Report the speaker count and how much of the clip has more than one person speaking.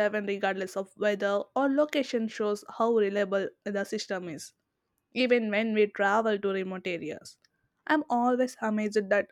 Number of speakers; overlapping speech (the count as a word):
one, no overlap